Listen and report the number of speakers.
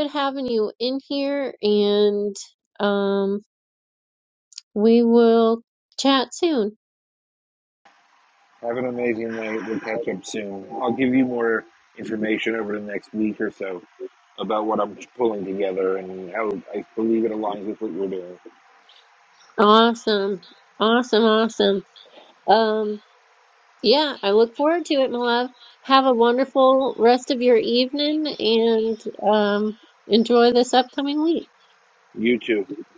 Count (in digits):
2